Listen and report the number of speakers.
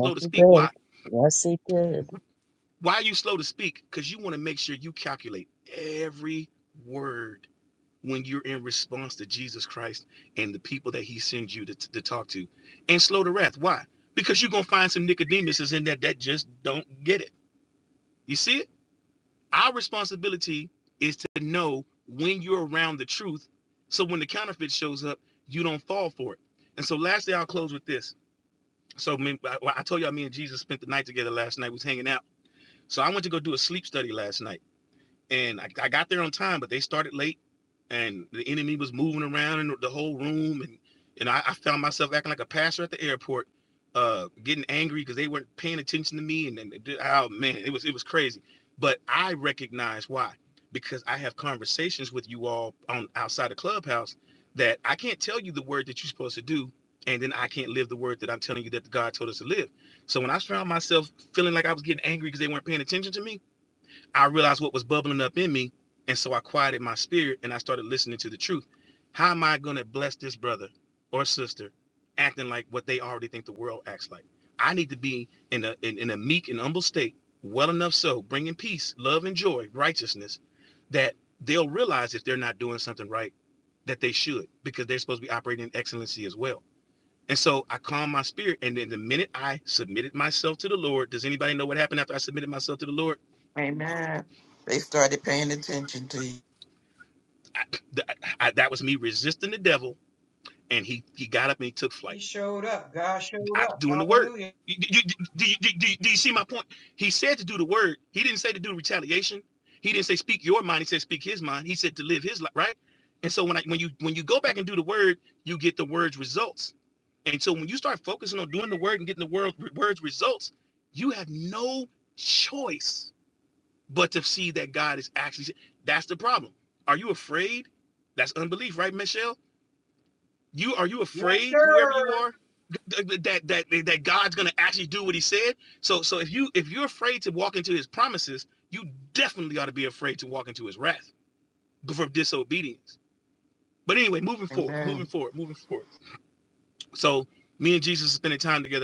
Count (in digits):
4